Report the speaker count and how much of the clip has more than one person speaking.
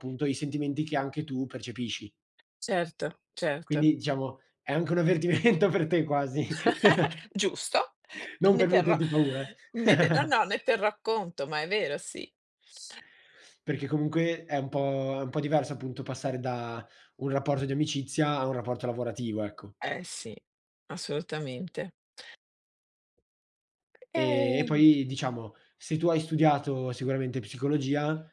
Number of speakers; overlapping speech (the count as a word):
two, about 6%